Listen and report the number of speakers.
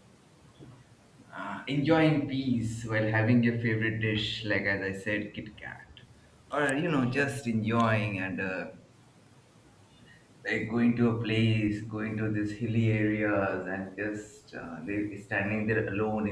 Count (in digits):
1